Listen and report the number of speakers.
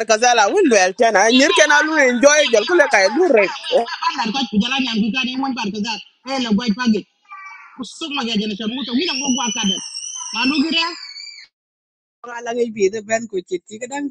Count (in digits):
3